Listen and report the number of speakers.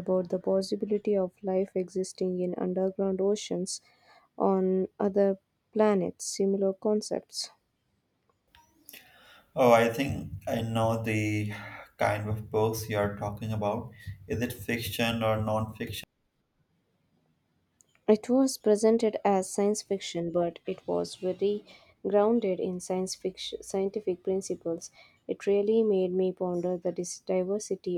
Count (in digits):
2